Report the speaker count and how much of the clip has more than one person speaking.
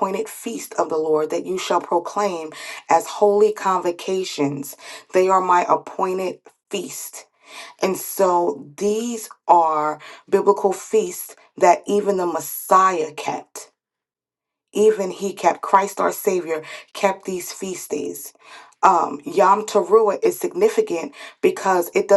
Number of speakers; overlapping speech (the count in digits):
1, no overlap